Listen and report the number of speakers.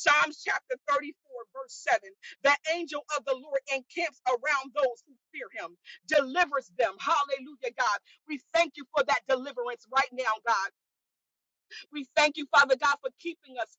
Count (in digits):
1